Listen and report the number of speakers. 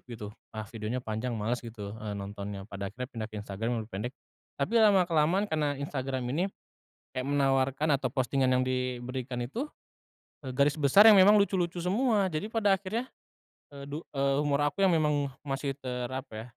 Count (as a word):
one